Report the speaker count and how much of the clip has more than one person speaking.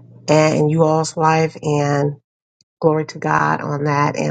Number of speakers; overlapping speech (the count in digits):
1, no overlap